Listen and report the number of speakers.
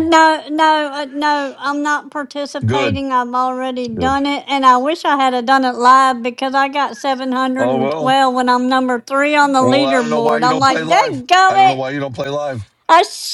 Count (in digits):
2